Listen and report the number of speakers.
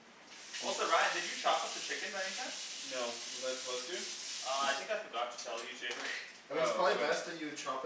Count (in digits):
3